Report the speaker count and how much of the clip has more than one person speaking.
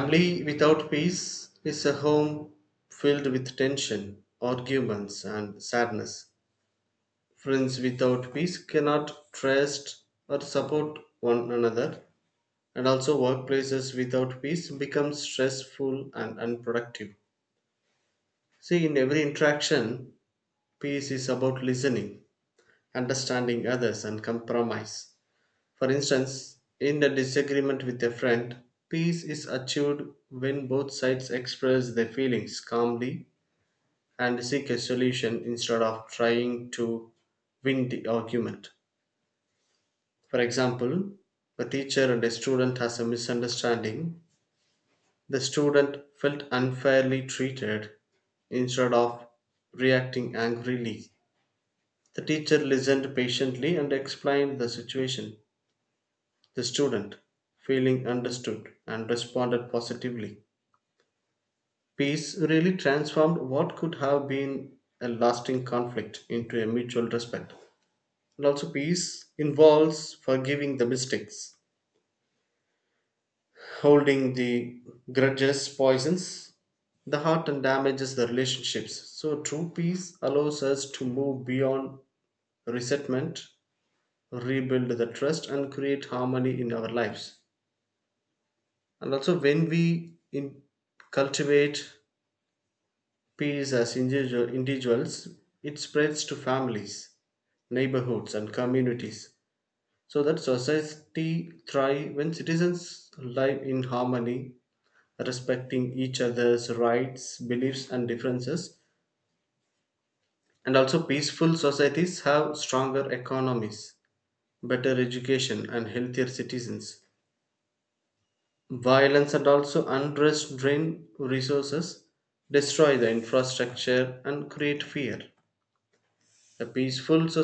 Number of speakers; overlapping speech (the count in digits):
1, no overlap